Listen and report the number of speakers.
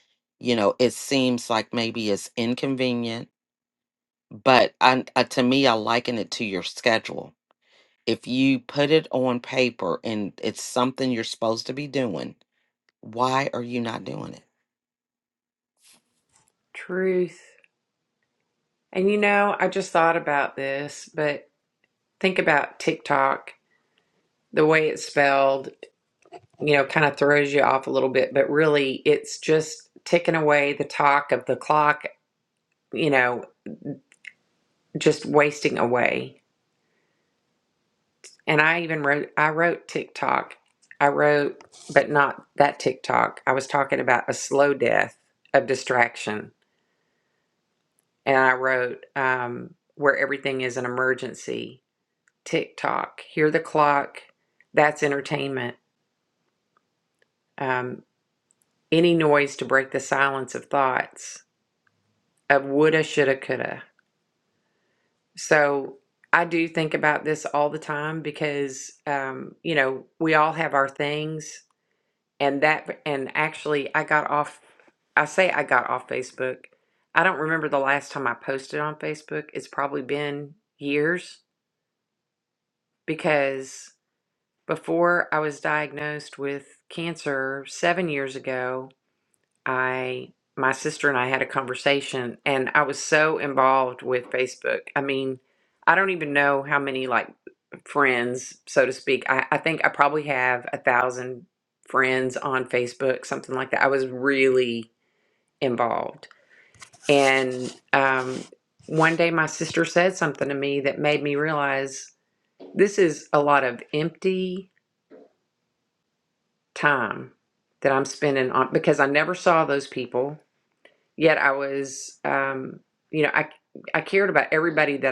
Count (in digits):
2